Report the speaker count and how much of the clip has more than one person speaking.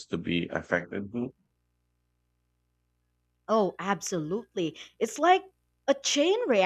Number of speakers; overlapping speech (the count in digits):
2, no overlap